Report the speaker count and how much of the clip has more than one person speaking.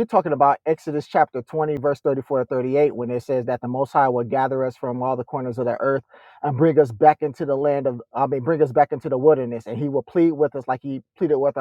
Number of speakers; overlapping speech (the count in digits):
1, no overlap